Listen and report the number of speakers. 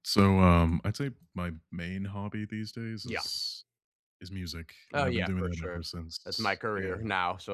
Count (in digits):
2